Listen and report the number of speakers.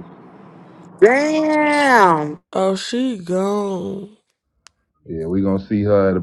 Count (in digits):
3